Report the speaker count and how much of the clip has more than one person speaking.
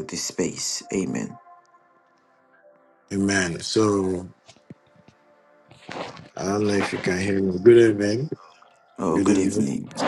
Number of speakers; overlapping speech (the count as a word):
two, about 5%